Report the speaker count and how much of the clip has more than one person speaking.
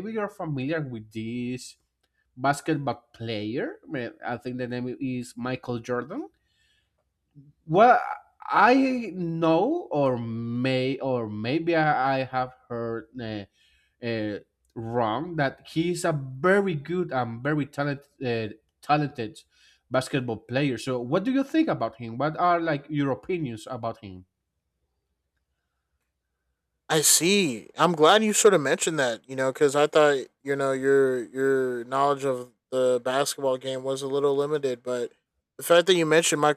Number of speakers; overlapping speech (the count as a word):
two, no overlap